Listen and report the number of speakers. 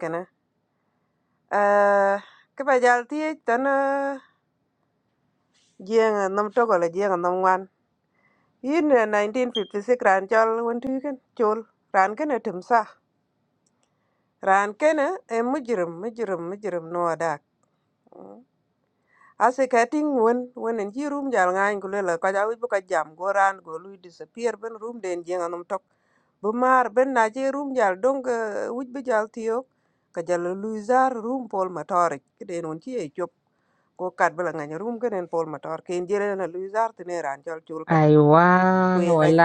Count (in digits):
2